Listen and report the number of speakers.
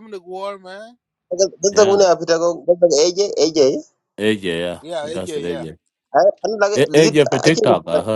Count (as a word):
three